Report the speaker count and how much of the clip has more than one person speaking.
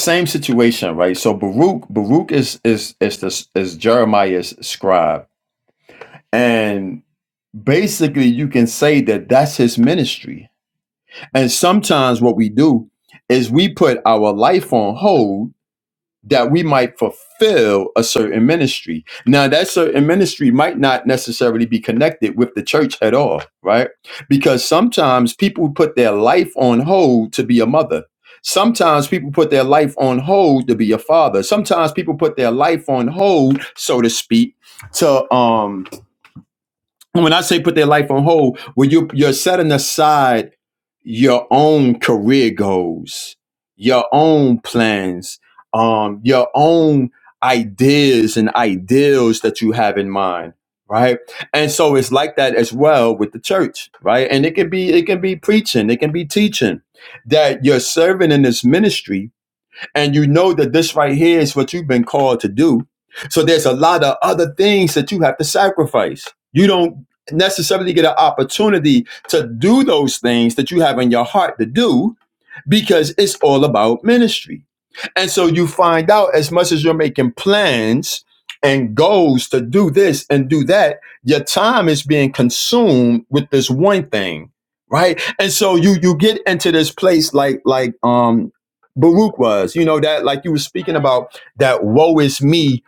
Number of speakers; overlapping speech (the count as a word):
one, no overlap